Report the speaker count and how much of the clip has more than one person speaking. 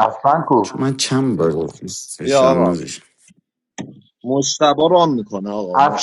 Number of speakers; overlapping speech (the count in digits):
3, about 15%